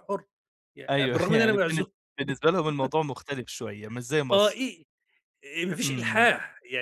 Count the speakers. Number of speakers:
two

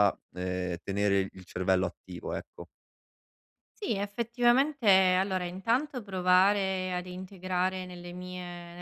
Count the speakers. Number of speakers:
two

